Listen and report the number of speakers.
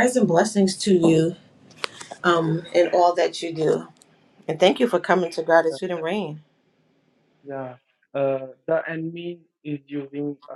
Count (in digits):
2